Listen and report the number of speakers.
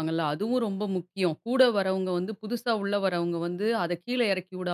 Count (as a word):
one